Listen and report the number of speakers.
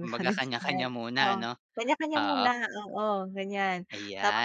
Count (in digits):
2